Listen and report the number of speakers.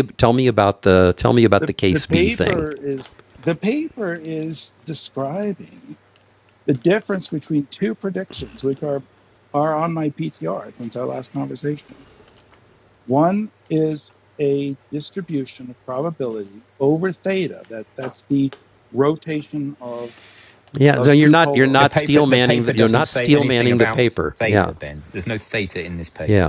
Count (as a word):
three